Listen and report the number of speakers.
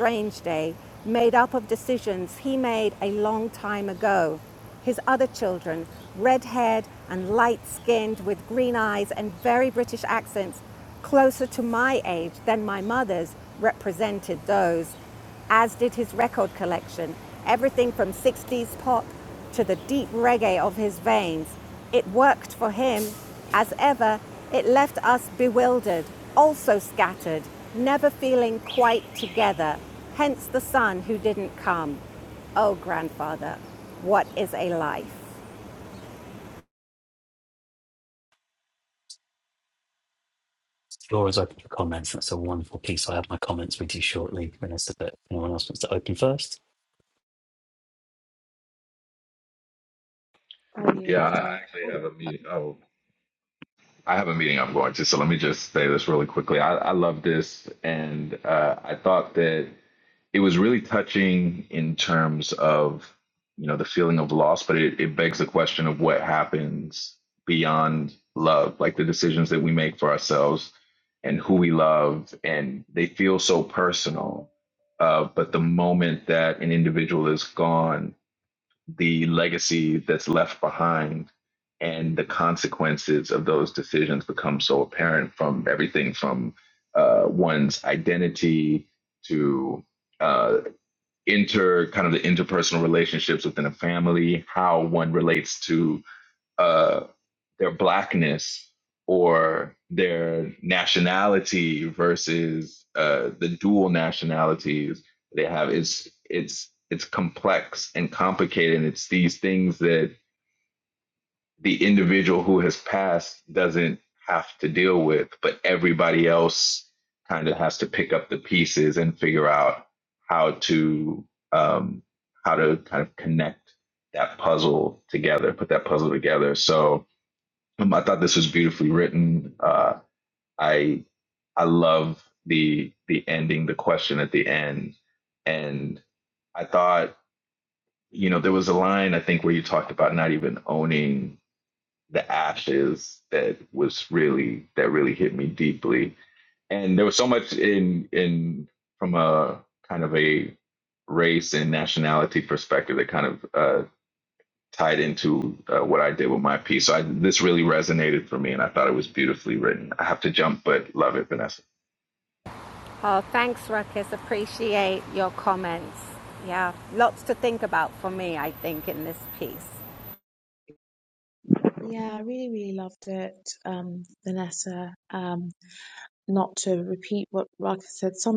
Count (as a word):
four